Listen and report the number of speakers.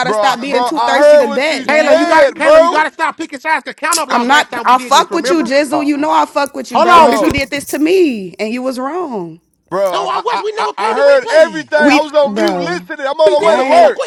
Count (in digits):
3